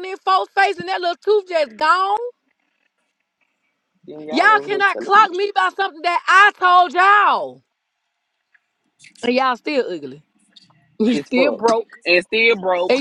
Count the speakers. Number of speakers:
2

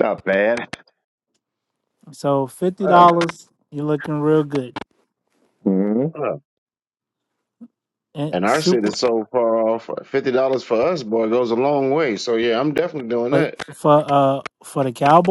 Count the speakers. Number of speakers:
3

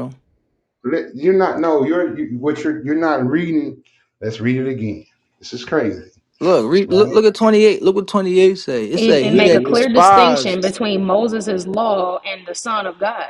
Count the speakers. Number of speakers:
3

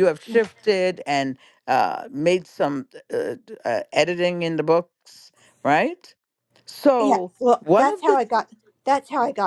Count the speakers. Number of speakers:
2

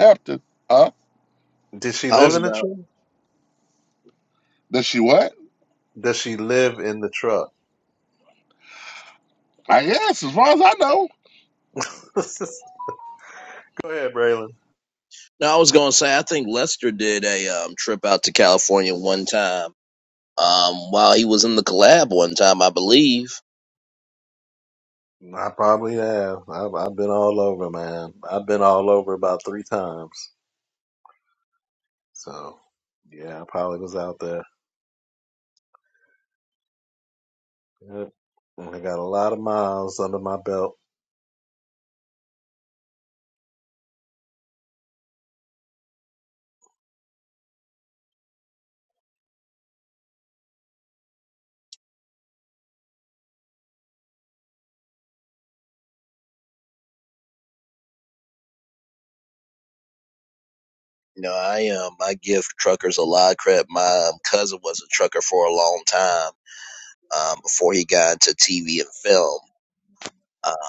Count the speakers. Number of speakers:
3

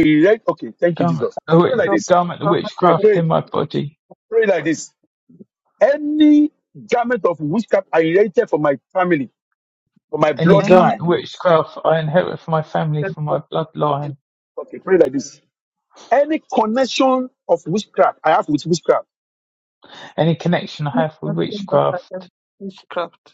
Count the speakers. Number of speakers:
3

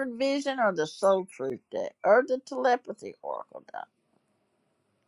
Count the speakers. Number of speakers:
1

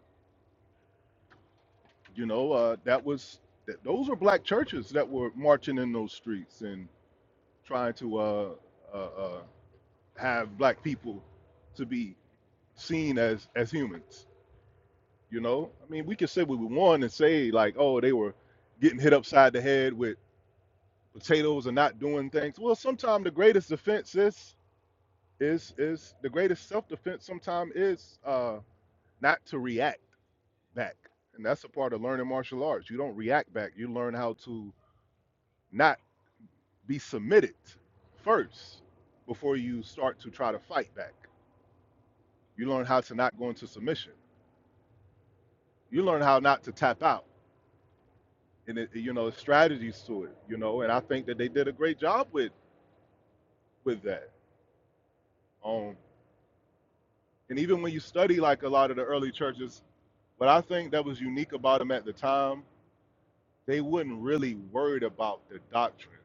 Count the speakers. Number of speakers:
1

